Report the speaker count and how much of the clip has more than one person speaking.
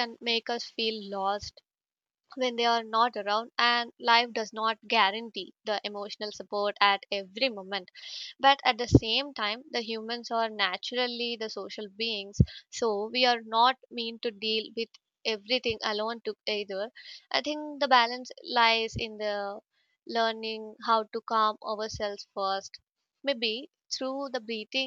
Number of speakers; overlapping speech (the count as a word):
one, no overlap